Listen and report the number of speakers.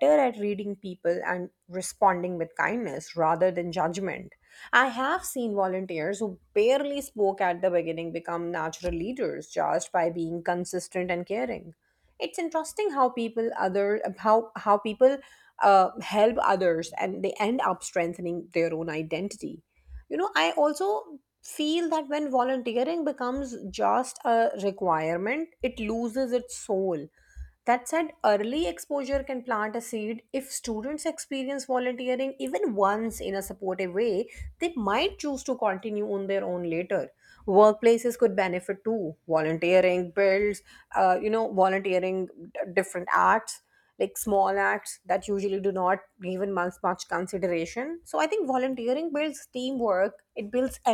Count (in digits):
1